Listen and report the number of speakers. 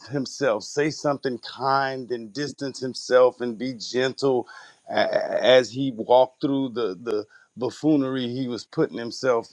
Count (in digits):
1